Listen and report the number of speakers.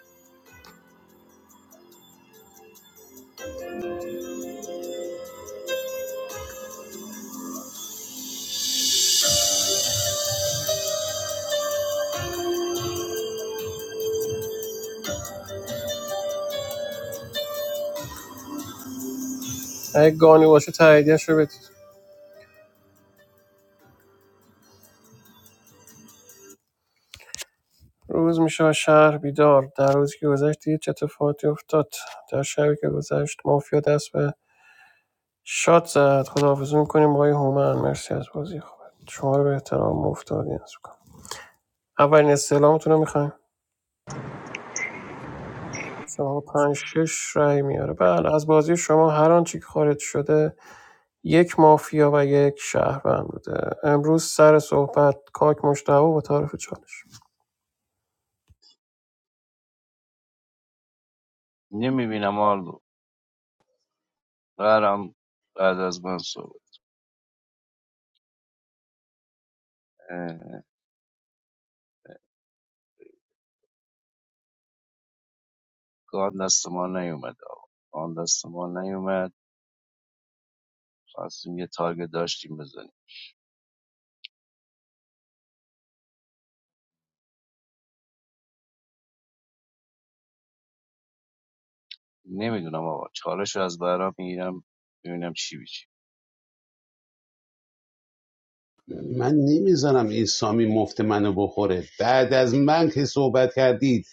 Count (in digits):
3